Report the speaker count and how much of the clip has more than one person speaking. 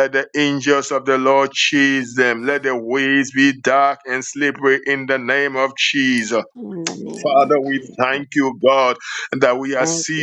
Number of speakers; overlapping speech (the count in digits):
2, about 15%